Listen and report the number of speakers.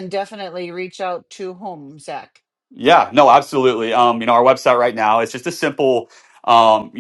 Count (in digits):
2